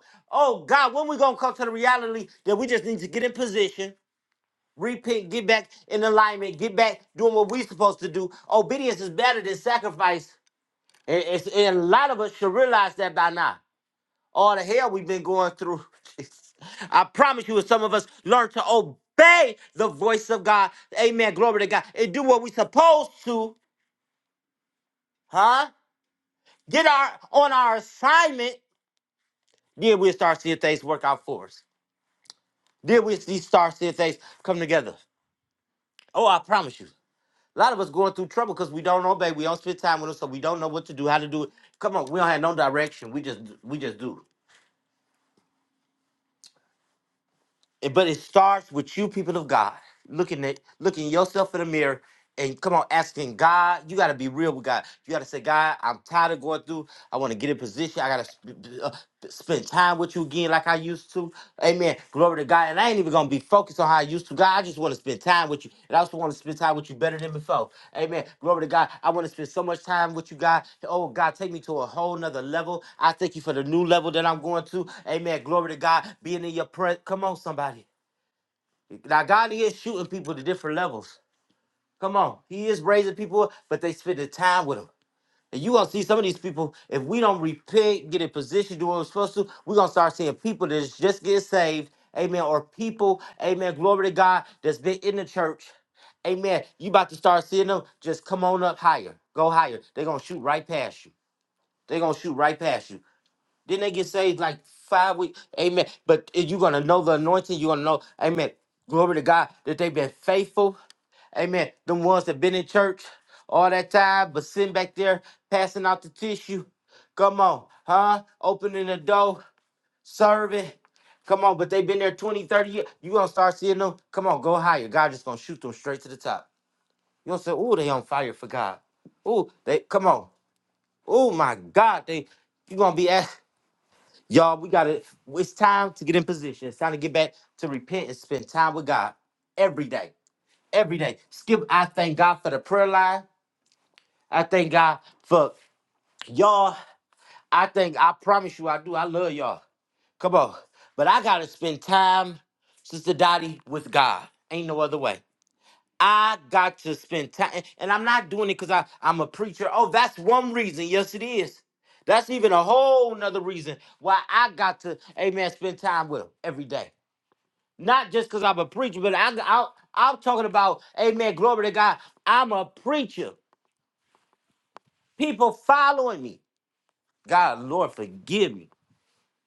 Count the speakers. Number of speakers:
one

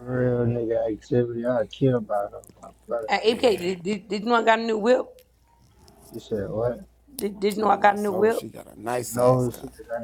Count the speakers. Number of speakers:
three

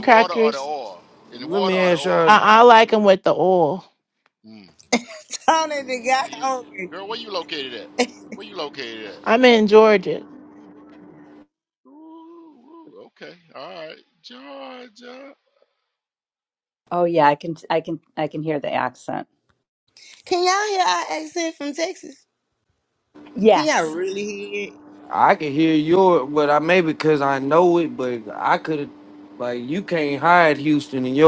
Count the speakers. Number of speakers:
five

